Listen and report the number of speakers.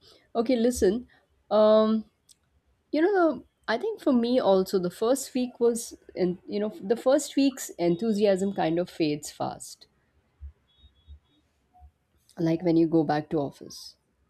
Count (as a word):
one